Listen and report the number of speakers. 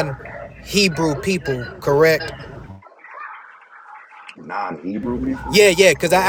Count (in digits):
2